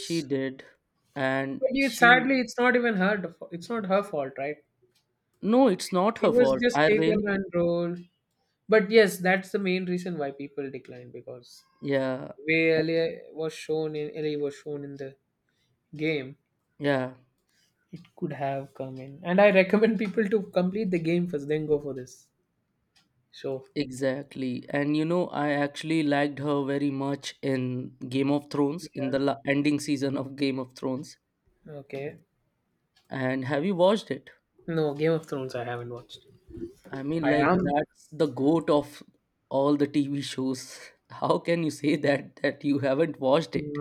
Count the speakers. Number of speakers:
two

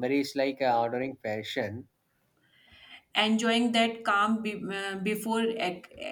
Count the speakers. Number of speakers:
two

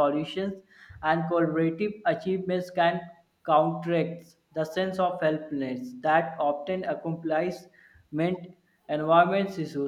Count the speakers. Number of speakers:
one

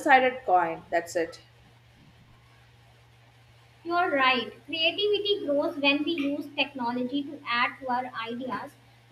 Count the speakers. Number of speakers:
two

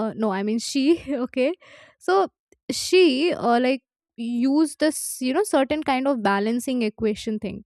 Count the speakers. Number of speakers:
one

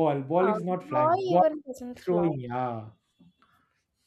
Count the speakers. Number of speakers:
two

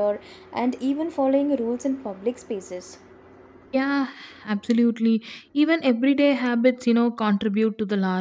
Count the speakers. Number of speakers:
two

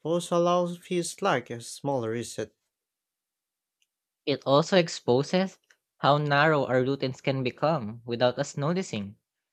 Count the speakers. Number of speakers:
two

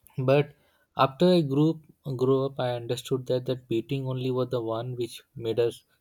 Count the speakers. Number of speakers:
one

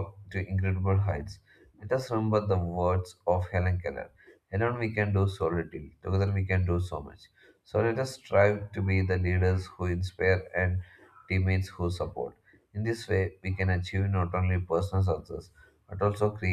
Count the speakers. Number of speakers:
one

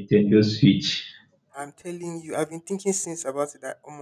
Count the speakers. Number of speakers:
two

